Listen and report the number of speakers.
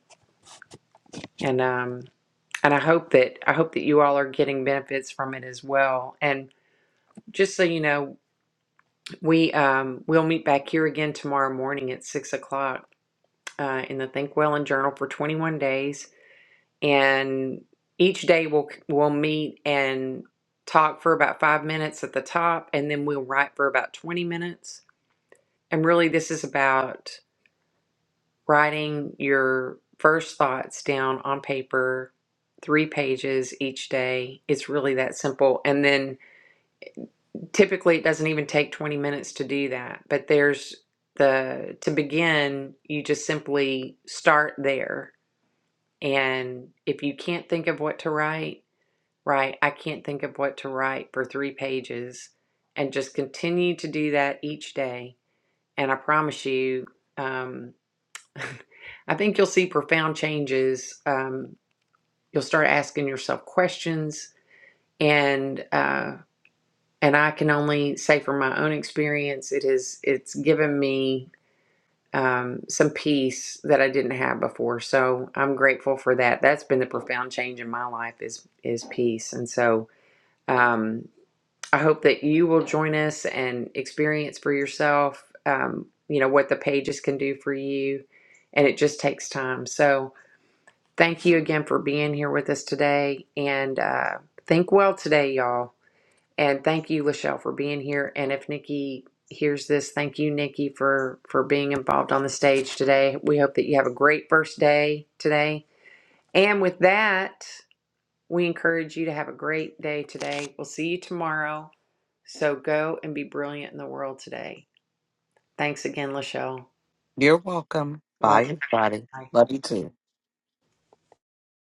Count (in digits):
2